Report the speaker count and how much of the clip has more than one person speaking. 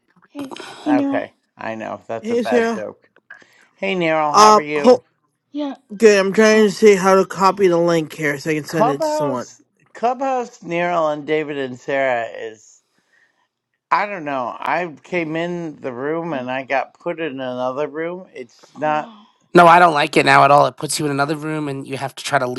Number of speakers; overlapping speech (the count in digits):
4, about 13%